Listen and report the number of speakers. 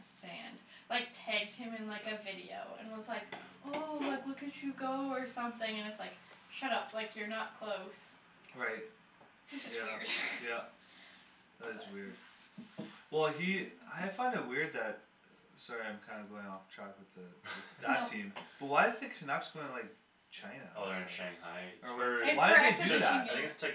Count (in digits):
3